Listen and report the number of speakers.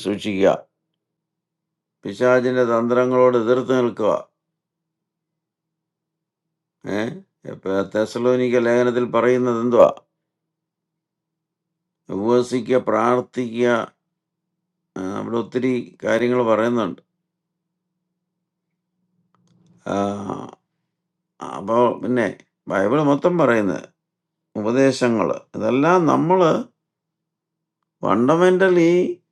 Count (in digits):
1